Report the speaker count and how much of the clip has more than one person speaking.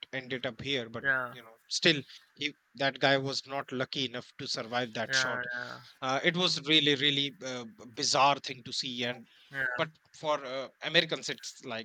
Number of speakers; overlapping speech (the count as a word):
two, about 4%